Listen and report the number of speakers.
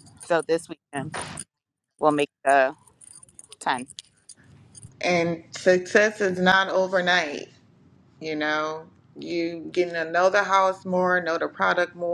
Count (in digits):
2